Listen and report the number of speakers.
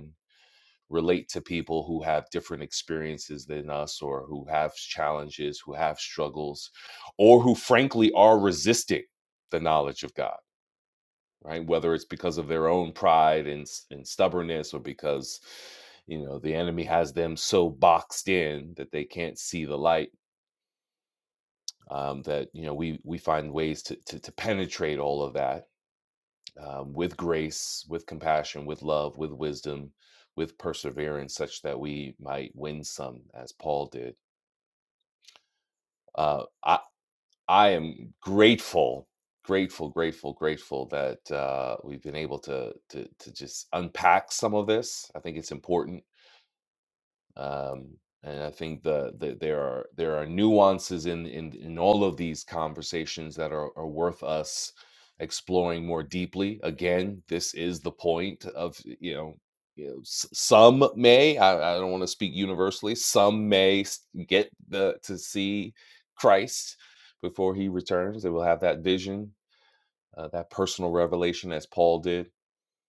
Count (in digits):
1